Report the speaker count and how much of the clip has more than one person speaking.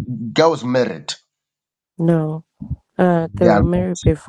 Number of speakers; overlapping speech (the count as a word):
two, about 17%